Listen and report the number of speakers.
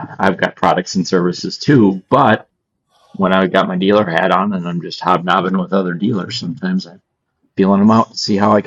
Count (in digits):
1